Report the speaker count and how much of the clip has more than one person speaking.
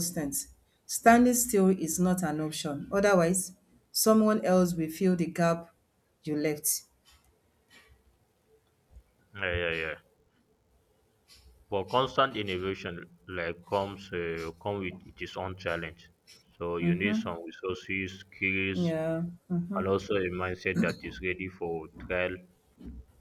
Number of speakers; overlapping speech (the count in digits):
2, about 1%